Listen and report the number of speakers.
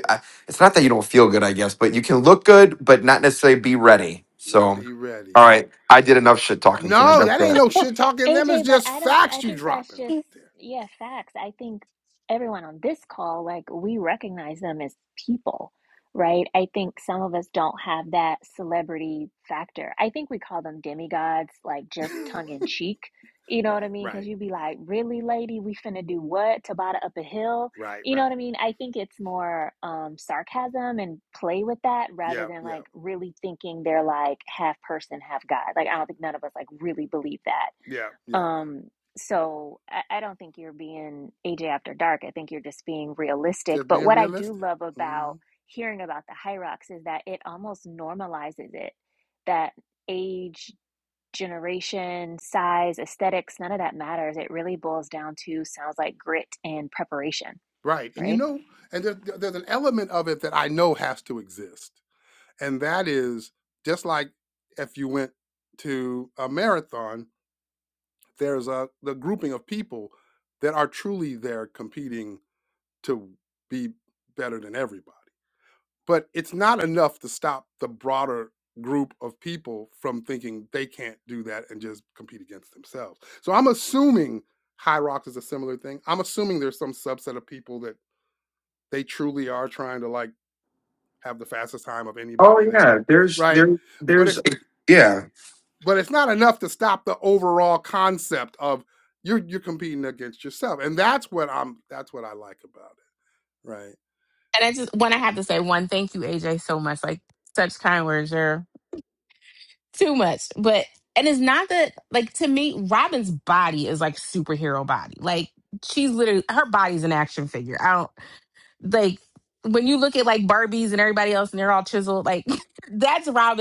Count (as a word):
four